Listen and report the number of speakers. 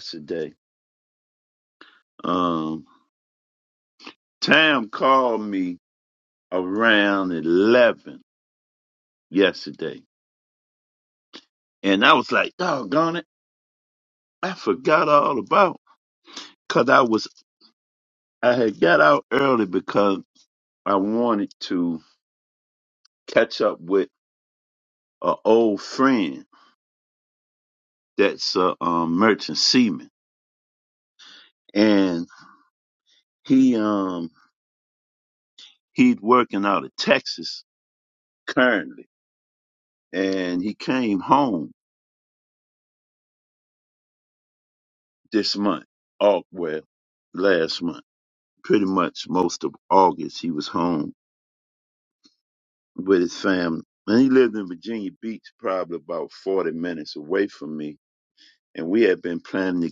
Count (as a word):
one